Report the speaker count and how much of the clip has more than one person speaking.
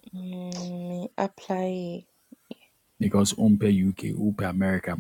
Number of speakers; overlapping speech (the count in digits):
2, no overlap